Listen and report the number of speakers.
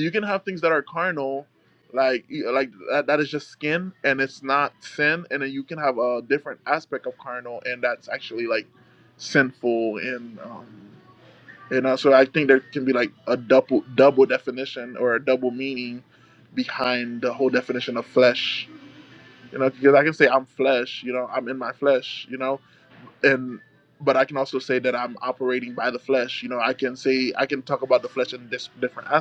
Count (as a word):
one